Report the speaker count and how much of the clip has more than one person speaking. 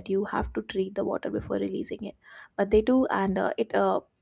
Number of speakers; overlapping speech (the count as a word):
one, no overlap